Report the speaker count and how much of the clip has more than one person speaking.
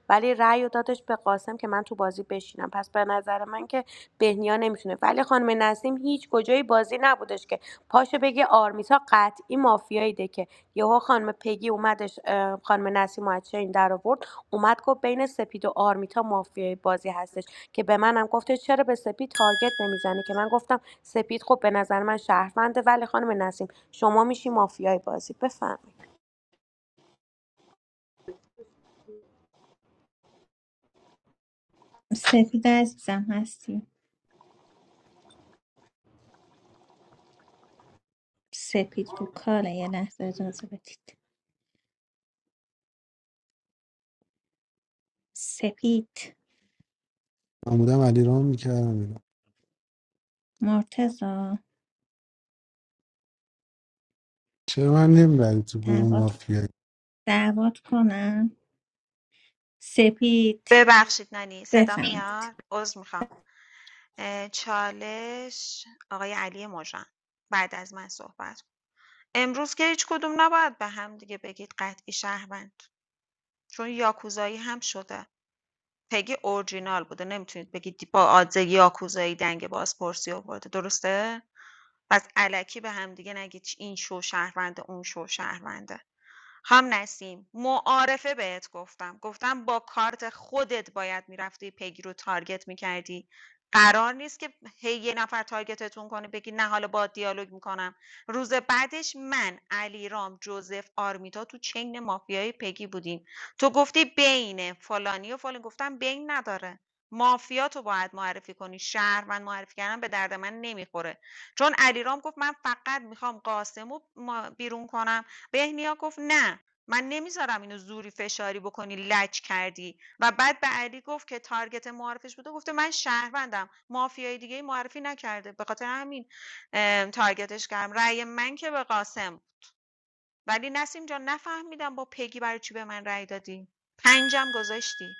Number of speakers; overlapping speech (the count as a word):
four, about 1%